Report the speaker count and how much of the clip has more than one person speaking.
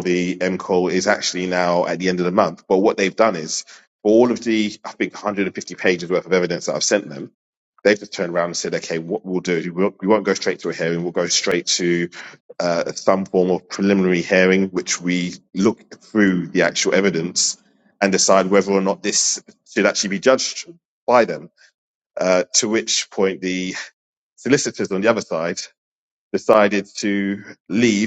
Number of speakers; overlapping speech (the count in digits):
1, no overlap